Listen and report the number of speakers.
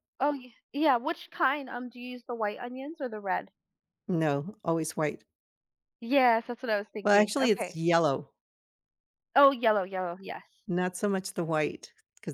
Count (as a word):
two